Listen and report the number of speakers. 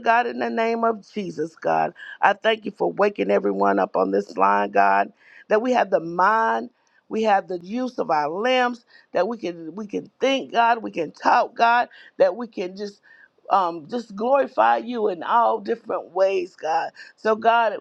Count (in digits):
1